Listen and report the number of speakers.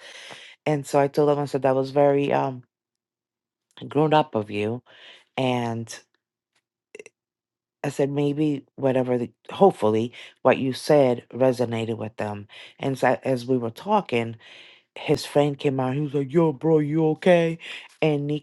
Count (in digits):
1